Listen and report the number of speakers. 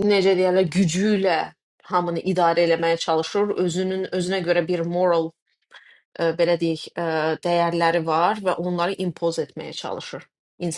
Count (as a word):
one